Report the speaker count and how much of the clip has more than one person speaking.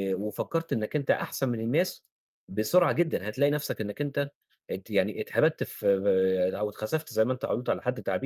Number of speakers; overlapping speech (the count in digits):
1, no overlap